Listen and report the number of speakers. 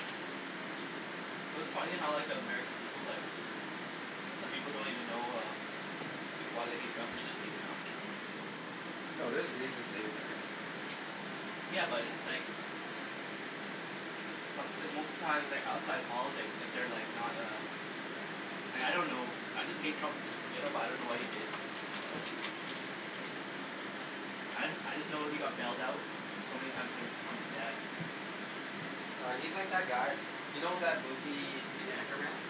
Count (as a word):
two